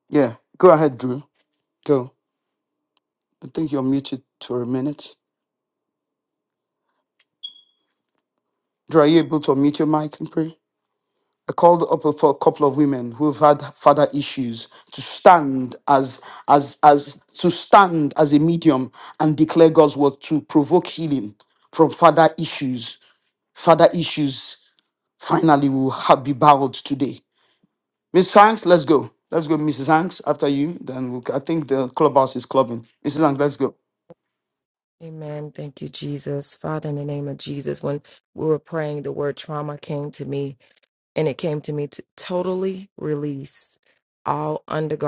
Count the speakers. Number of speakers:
two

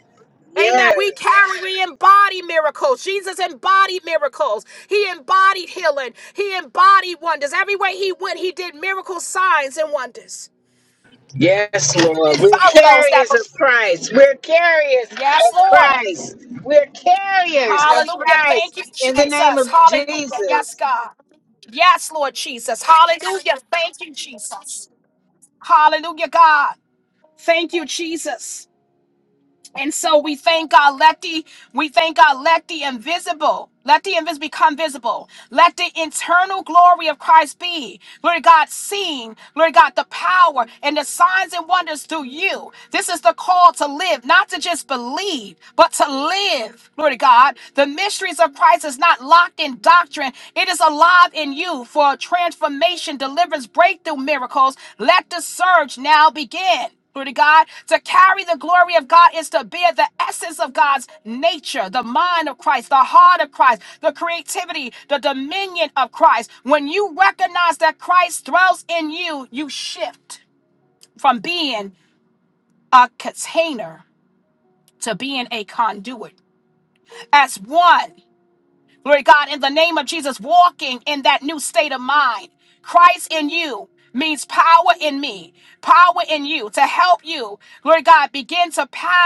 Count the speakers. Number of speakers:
two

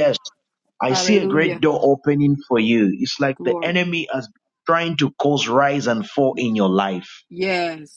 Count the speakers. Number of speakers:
two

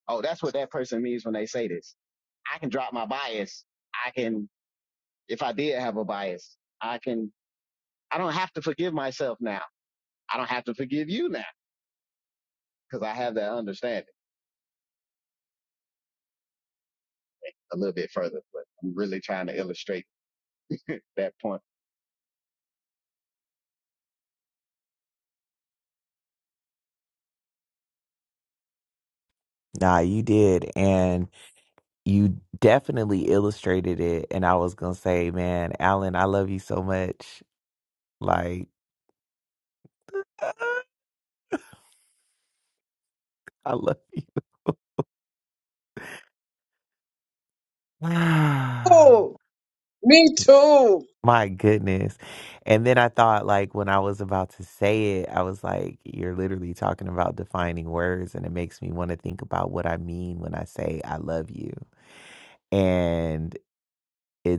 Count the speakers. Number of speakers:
three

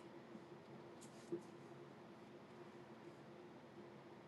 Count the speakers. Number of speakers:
zero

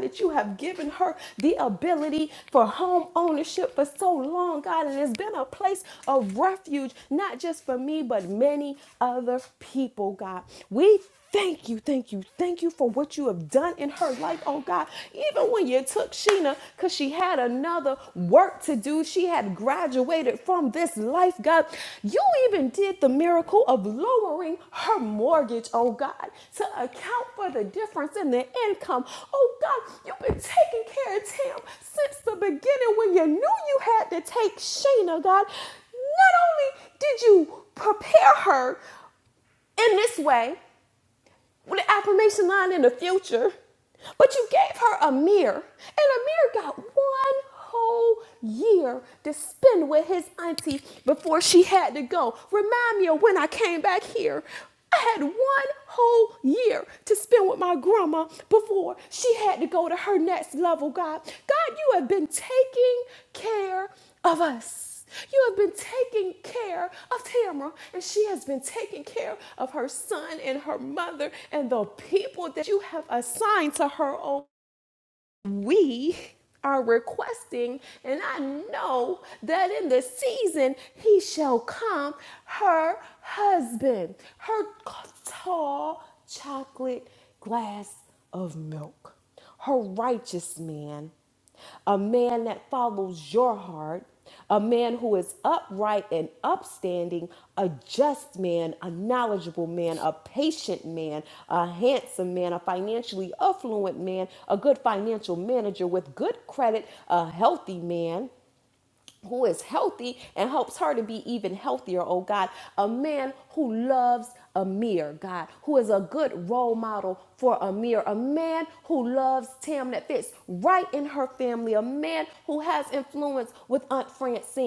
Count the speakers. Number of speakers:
one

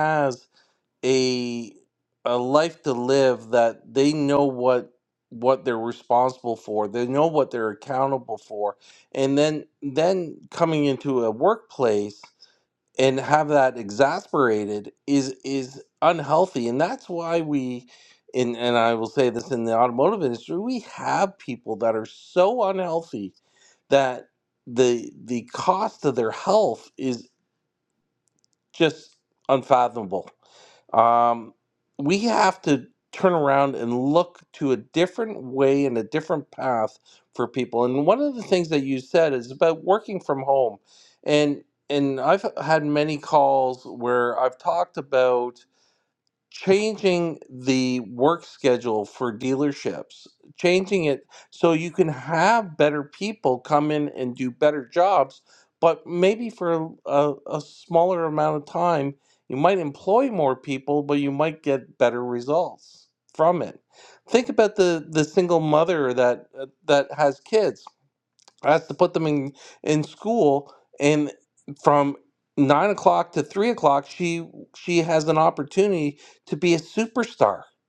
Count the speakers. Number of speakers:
one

